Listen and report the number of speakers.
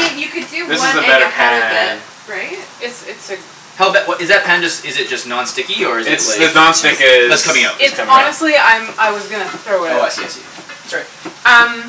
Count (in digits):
4